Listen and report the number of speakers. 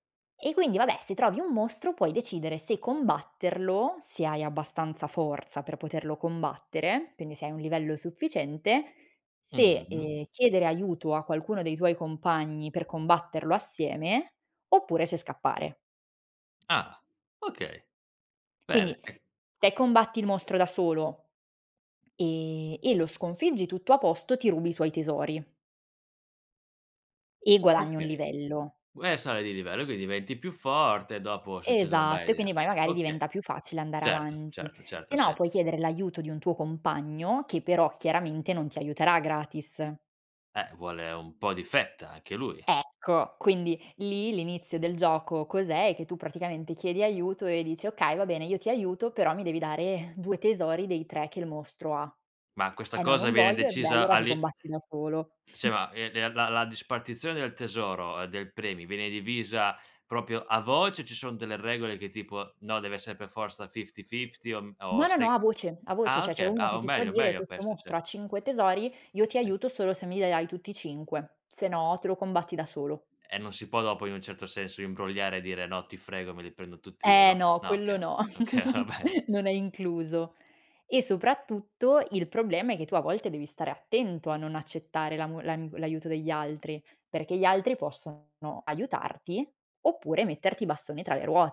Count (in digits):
2